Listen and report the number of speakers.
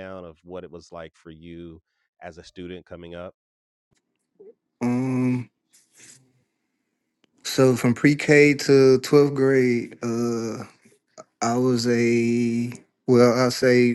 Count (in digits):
2